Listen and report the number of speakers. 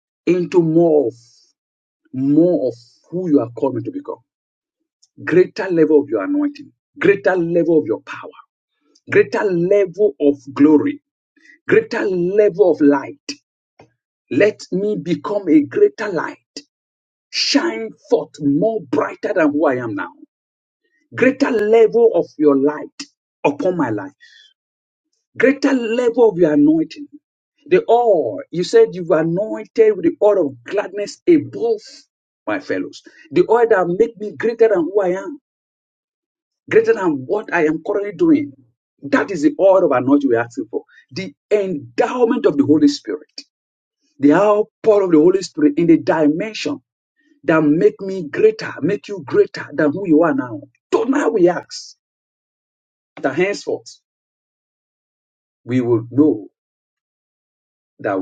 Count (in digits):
1